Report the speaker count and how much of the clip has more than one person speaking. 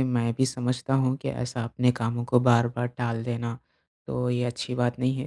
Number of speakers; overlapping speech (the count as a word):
one, no overlap